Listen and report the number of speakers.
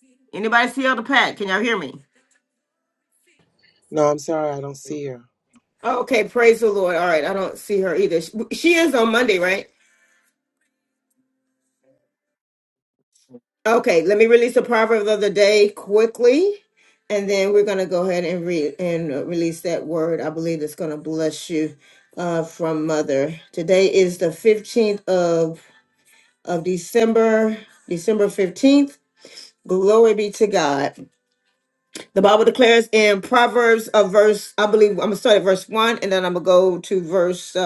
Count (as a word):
two